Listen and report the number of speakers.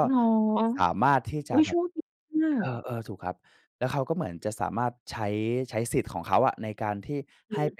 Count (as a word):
two